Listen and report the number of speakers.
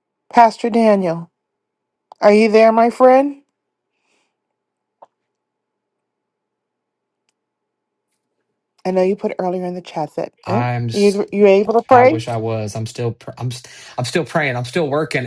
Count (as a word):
two